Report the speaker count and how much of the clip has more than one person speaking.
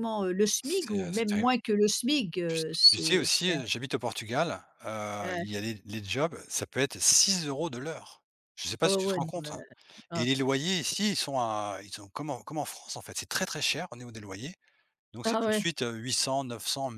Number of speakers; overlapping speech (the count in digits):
2, about 20%